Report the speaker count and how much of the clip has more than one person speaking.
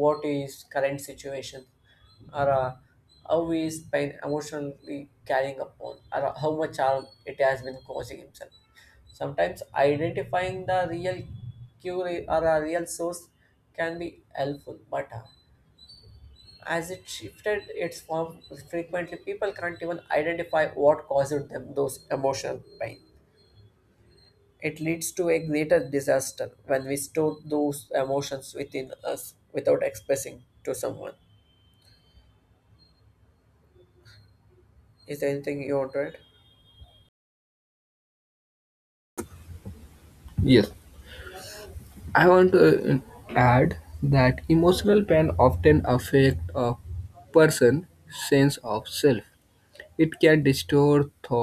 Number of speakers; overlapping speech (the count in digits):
2, no overlap